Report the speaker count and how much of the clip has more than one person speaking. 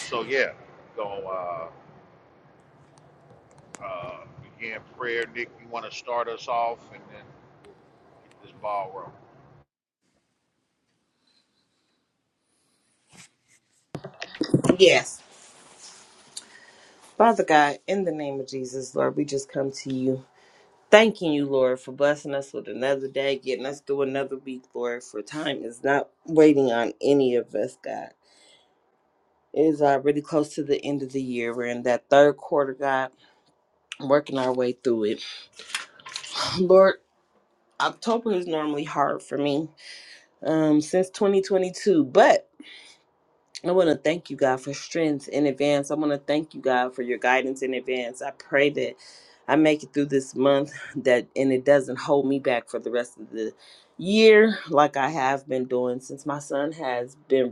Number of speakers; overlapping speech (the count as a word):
two, no overlap